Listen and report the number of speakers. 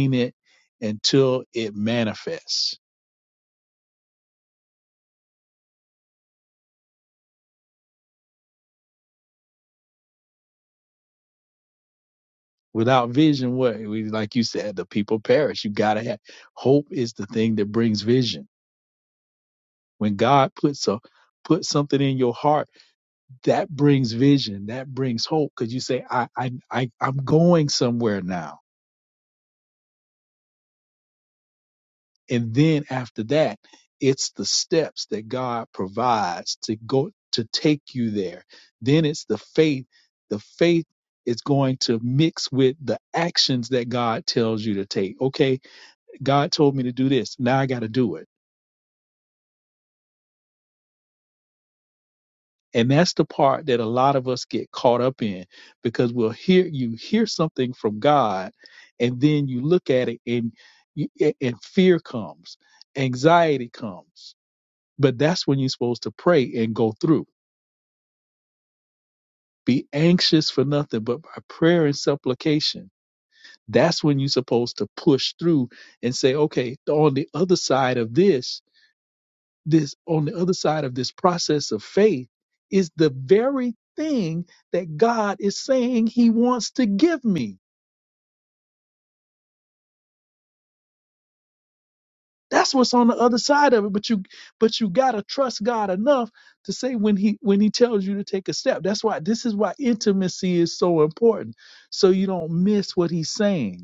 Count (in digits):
1